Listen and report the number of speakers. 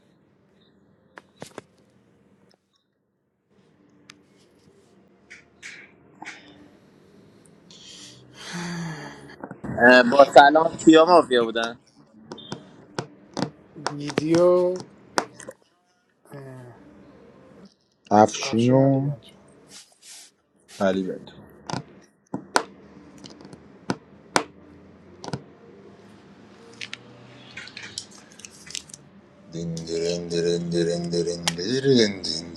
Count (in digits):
3